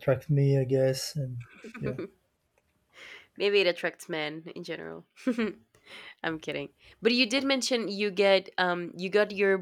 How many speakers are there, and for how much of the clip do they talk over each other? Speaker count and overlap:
2, no overlap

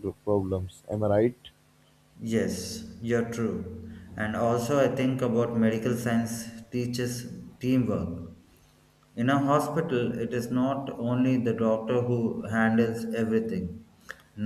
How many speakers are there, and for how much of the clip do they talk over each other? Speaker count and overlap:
2, no overlap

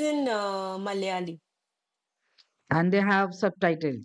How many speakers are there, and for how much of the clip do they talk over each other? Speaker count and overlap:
2, no overlap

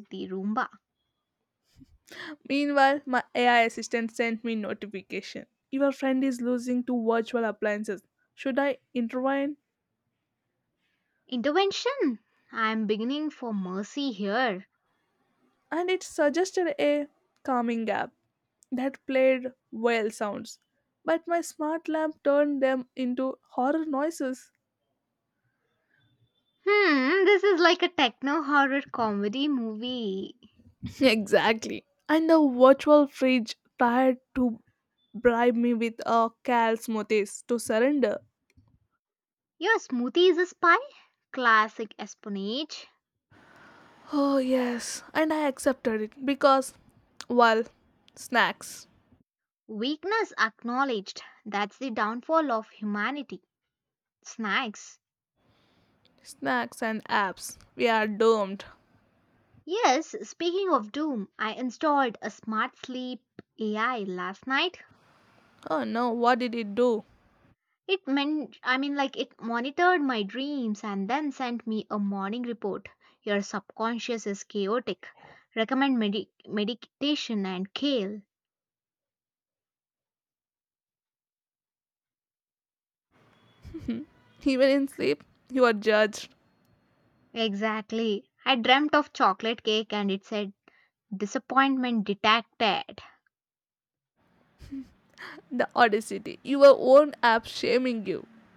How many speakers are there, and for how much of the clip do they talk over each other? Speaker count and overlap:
2, no overlap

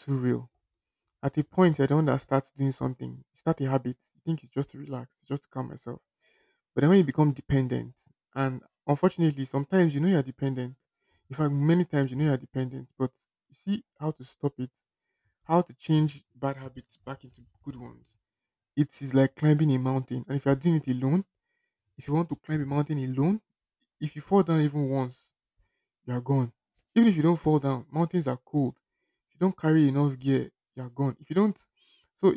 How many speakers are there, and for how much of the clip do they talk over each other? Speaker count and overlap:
1, no overlap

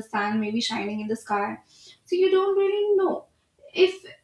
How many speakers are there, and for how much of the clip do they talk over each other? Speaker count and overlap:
1, no overlap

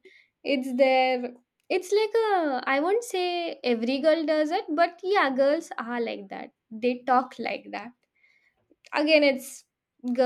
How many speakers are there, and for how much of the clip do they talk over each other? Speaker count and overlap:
1, no overlap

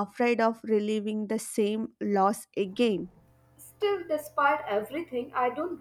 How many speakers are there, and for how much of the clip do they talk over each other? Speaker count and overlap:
2, no overlap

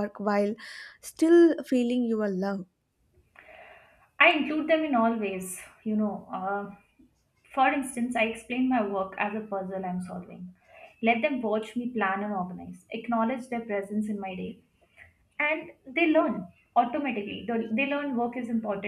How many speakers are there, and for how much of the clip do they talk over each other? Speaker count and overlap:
2, no overlap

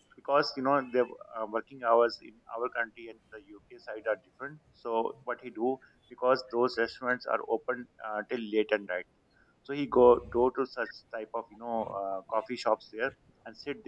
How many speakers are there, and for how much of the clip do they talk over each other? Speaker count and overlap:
1, no overlap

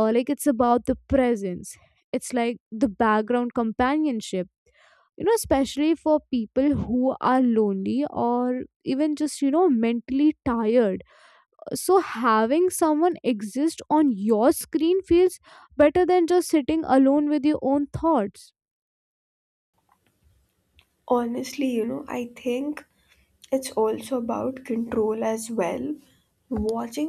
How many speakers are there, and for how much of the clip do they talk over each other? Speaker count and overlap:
2, no overlap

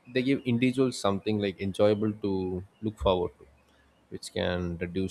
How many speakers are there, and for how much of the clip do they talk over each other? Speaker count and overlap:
1, no overlap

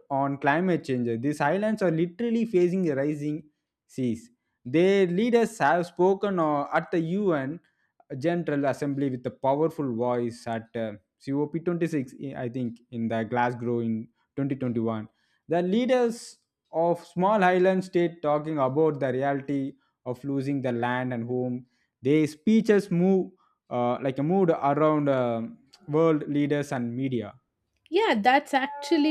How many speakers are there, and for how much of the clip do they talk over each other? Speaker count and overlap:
2, no overlap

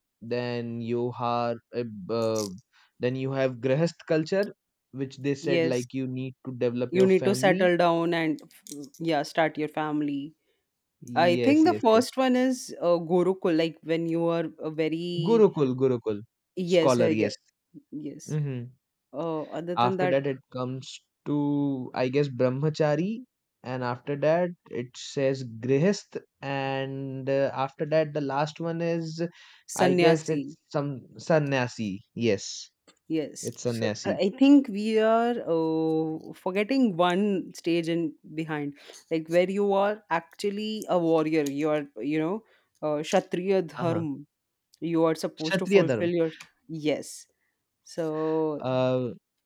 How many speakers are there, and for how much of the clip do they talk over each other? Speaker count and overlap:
2, about 11%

